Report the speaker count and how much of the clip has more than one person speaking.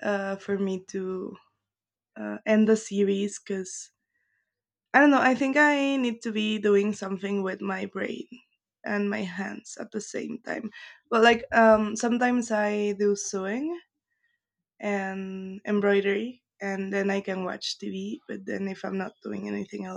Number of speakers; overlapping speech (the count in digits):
1, no overlap